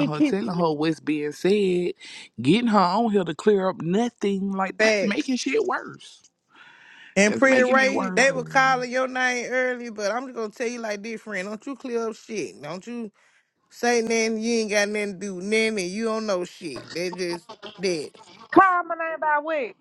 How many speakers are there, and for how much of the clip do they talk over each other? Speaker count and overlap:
three, about 11%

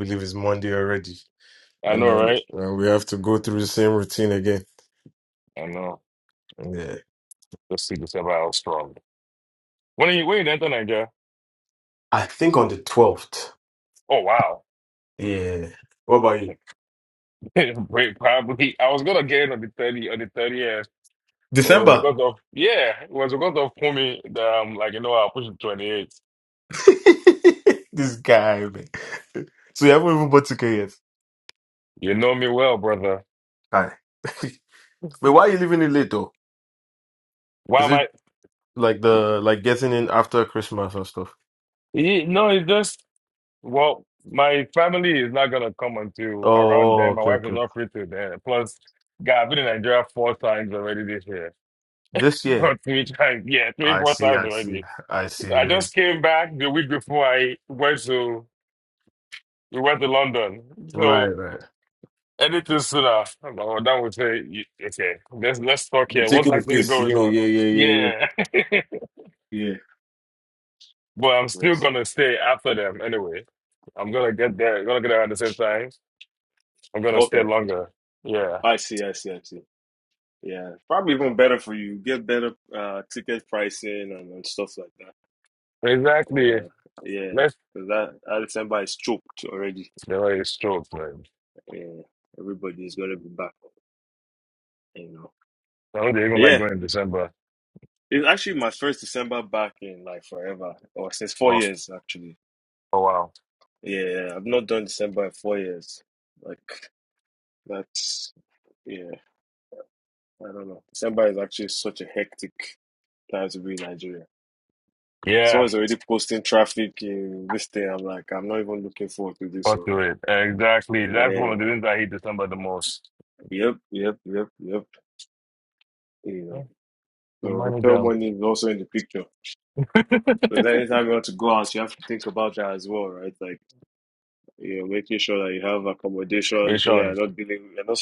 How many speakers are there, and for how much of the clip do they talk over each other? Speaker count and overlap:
two, about 7%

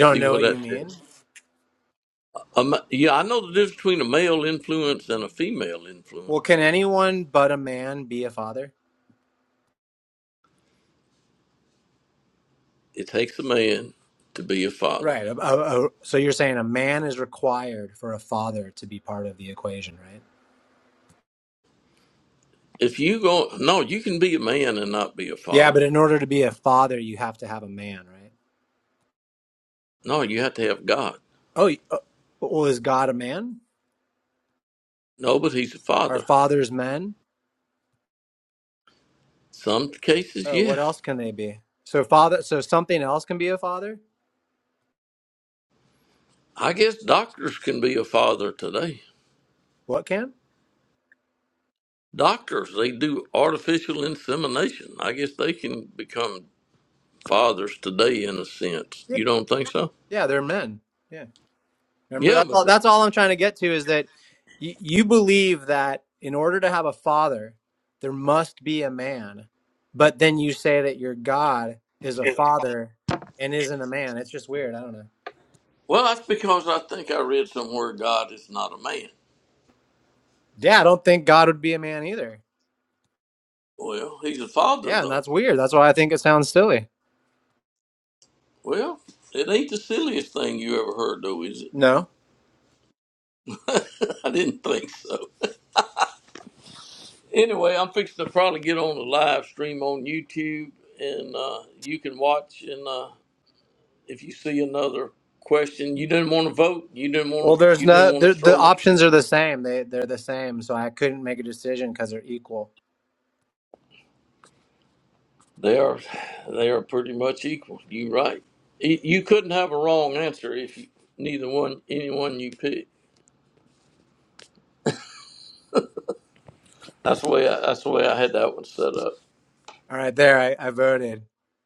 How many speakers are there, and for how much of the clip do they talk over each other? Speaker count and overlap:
two, about 3%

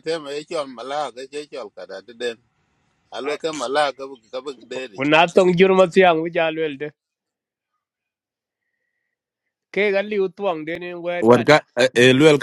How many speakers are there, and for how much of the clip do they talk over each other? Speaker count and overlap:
three, about 4%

